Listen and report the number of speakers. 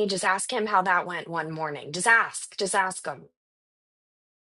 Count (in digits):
1